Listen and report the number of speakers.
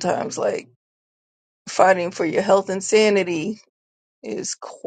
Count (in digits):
1